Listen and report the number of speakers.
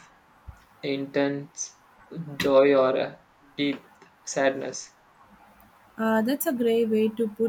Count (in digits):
2